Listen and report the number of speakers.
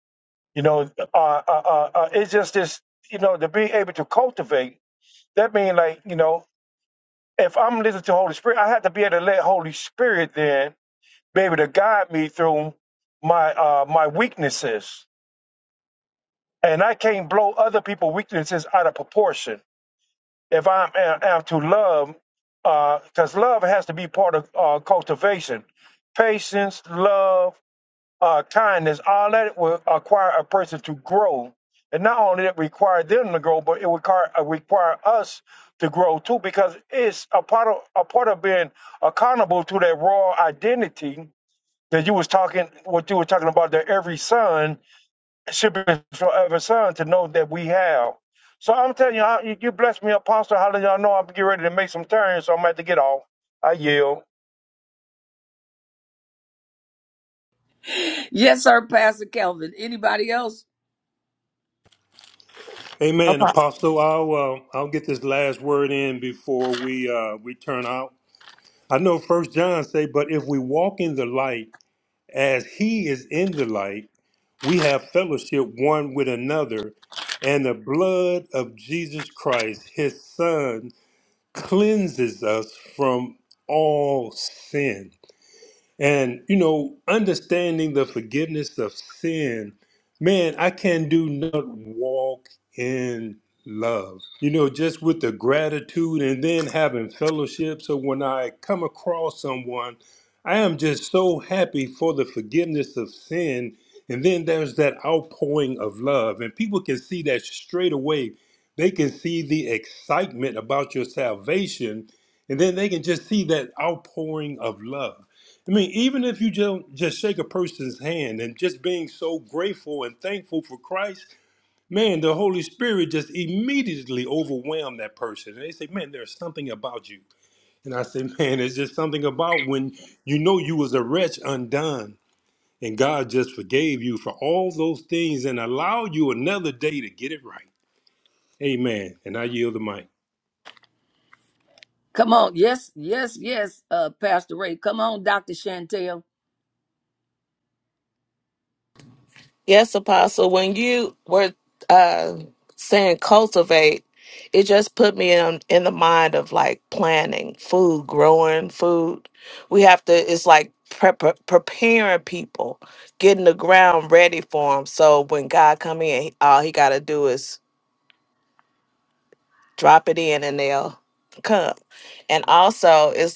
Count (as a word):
four